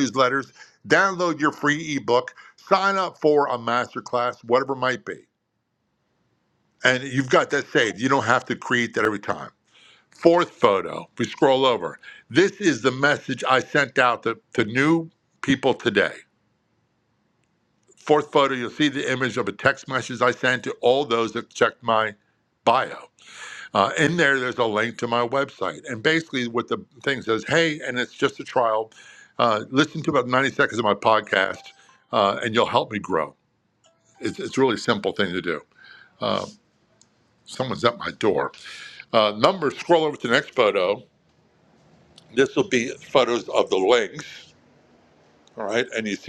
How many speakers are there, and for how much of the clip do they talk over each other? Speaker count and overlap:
1, no overlap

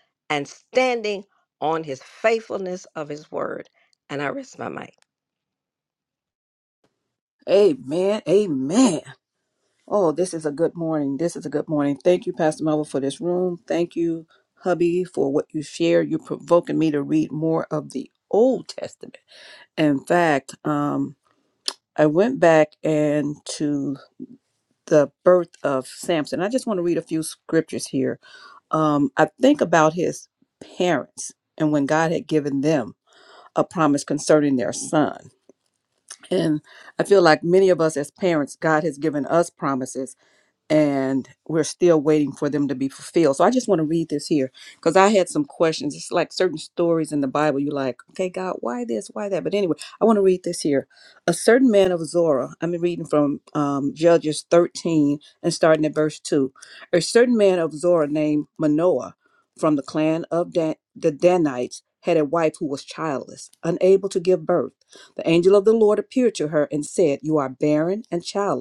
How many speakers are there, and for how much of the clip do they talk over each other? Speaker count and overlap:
2, no overlap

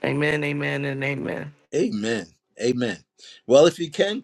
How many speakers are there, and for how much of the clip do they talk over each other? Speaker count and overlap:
2, no overlap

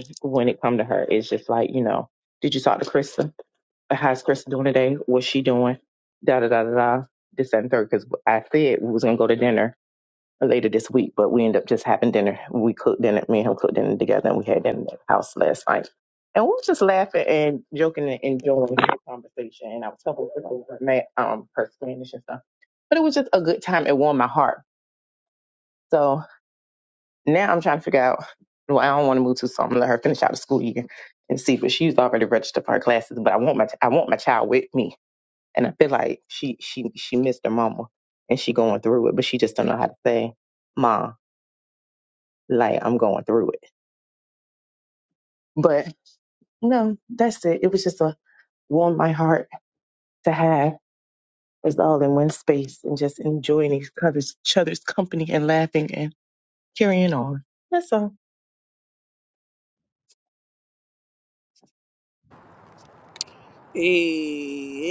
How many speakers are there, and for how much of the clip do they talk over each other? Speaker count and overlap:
2, no overlap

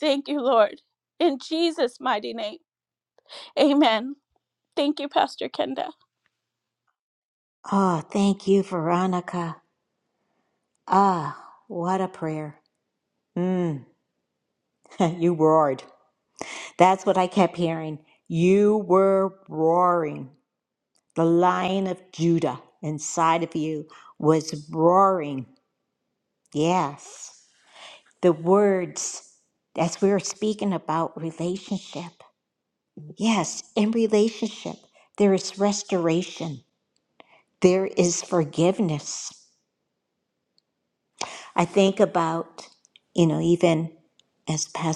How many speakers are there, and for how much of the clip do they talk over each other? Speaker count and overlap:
2, no overlap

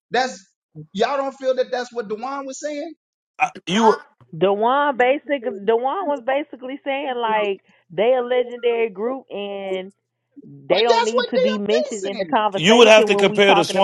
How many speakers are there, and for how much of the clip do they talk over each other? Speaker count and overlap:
3, about 16%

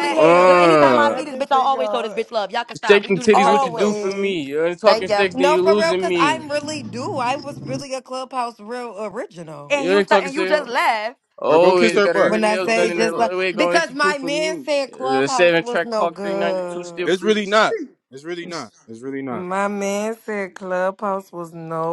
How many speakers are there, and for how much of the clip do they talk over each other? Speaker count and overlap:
4, about 54%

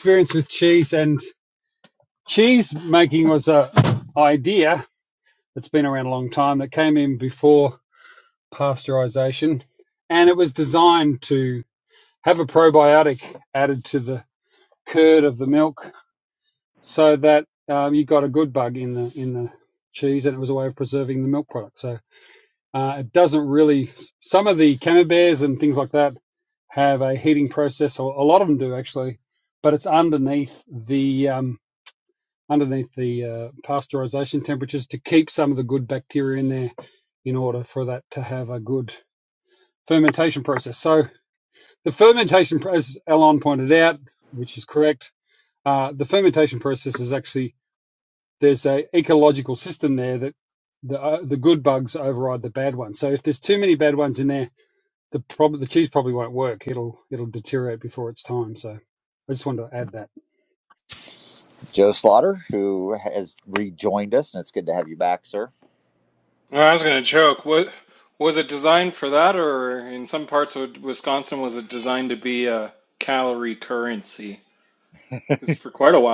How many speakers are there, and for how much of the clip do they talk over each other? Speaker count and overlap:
3, no overlap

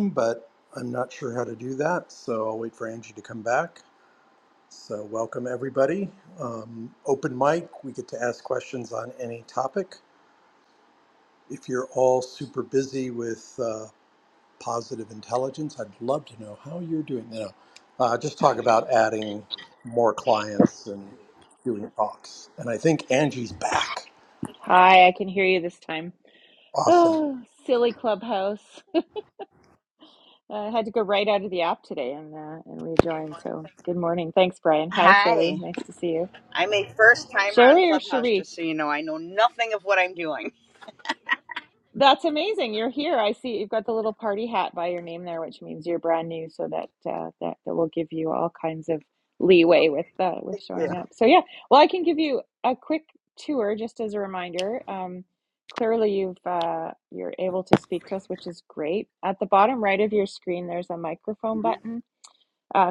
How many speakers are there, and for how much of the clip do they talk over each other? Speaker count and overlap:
3, about 3%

